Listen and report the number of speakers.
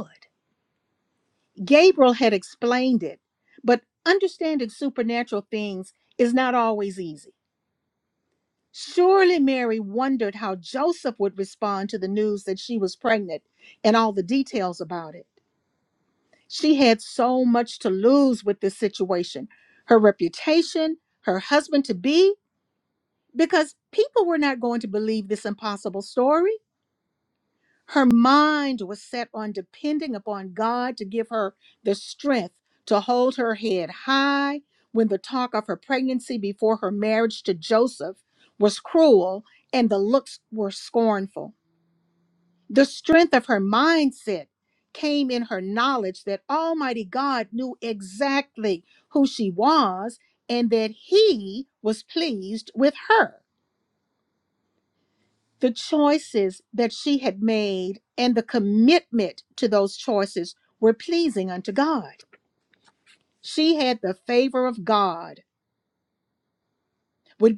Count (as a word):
one